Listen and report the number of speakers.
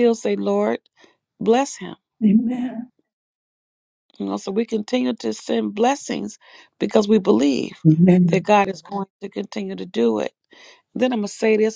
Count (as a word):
two